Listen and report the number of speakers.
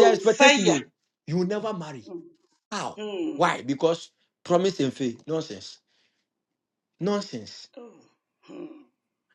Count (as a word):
two